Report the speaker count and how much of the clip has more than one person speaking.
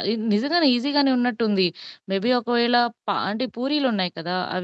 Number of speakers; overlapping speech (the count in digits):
1, no overlap